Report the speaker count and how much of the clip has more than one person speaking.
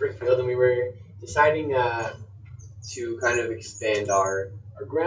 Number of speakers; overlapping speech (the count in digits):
1, no overlap